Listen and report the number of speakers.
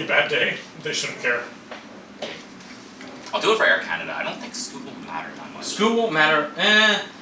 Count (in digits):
3